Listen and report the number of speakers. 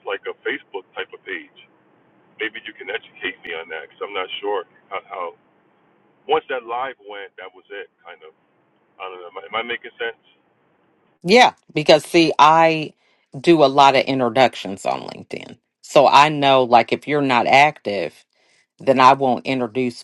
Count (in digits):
2